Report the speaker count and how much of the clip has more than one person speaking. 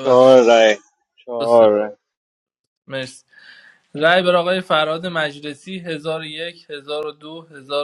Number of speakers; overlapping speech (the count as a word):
two, about 7%